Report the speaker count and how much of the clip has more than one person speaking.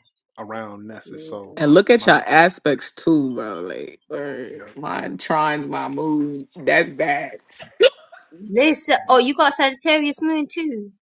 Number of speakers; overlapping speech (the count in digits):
3, about 9%